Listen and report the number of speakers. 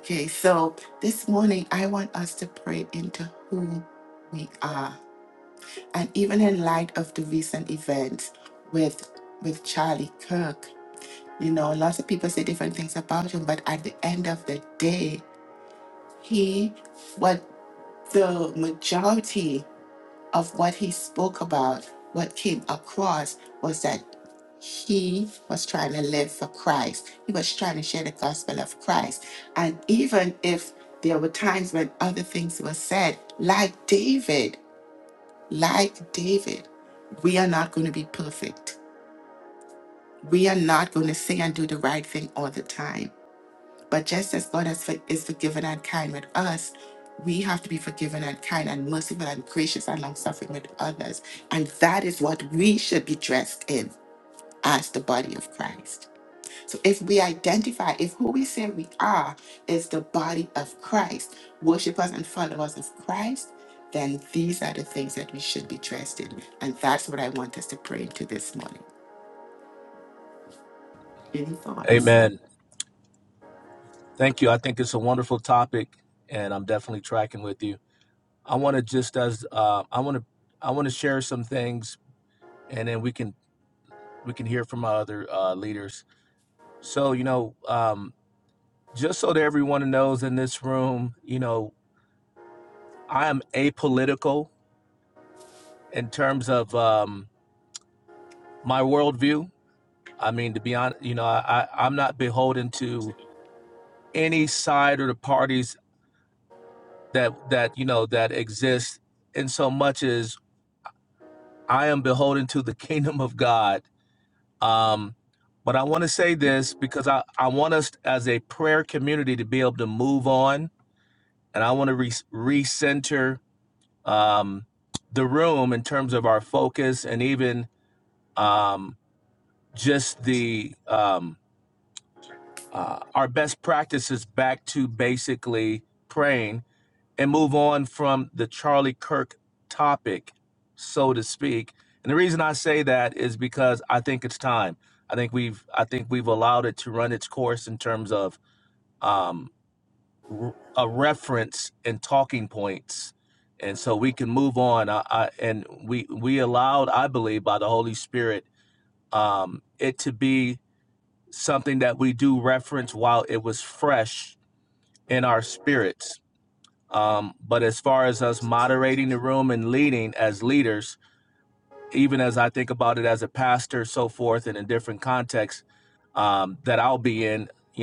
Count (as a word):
two